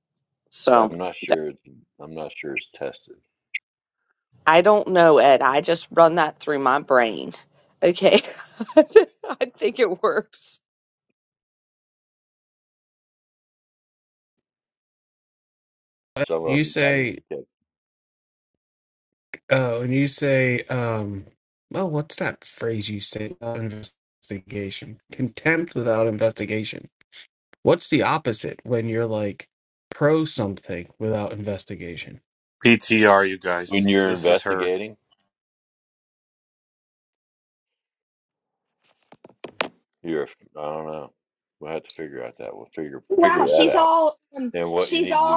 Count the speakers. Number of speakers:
five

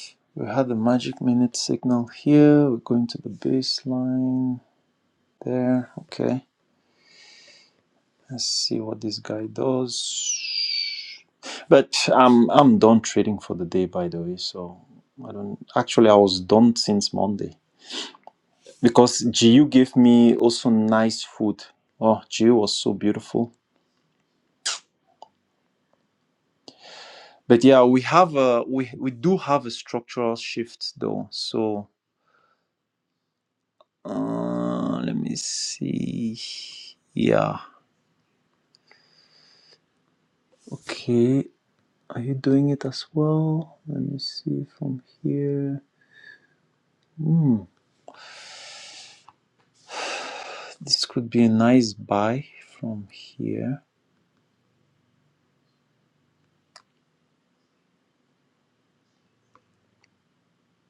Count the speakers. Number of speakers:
one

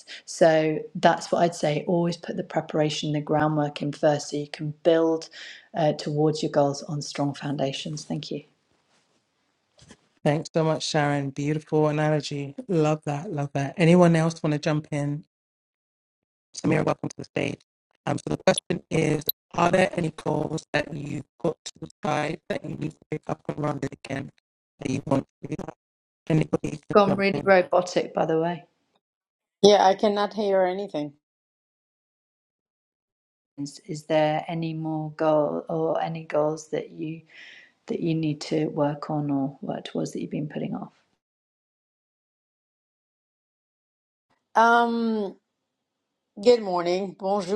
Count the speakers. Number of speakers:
three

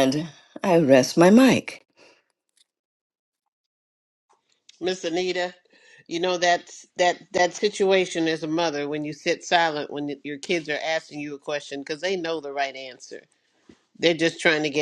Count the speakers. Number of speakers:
two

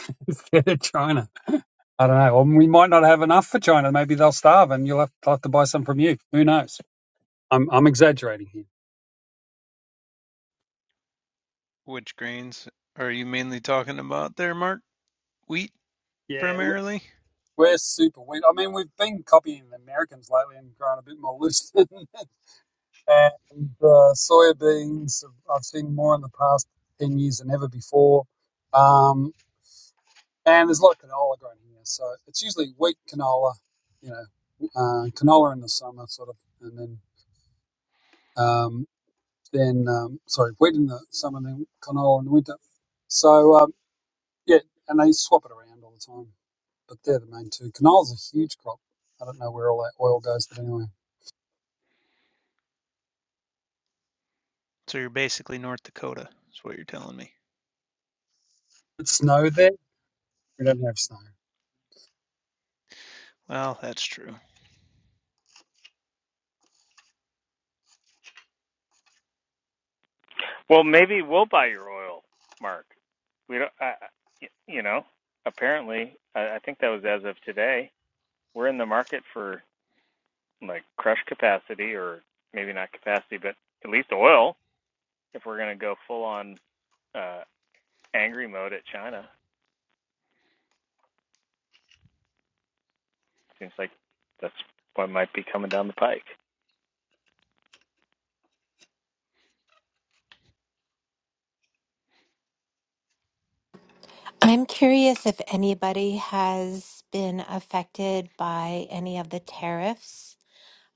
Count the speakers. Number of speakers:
four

